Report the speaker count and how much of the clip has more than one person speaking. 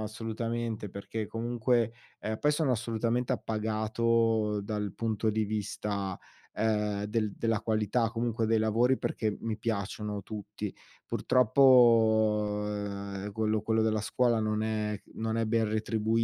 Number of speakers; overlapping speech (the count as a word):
one, no overlap